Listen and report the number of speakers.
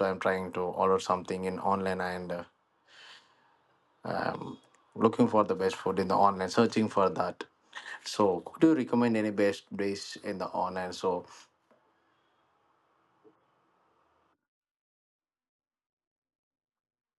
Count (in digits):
1